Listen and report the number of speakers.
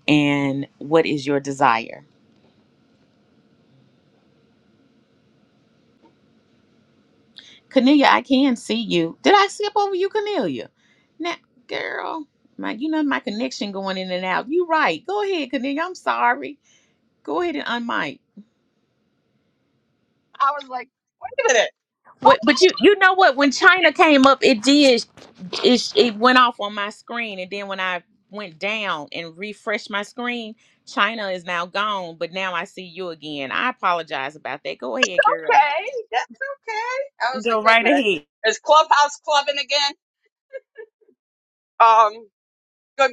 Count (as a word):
two